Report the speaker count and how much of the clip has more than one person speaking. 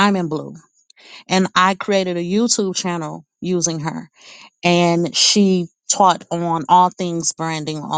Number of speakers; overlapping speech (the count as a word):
one, no overlap